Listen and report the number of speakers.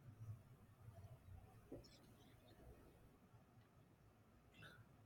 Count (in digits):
0